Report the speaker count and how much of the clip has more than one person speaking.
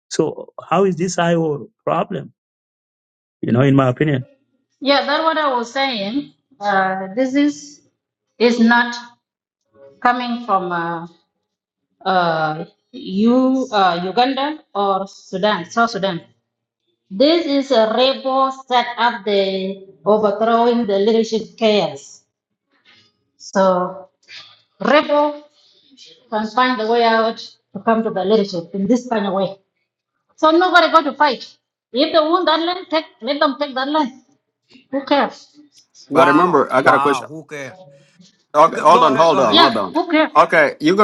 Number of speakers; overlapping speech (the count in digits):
4, about 6%